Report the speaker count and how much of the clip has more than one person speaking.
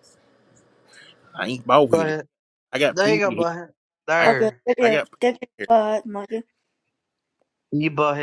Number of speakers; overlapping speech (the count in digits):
3, about 18%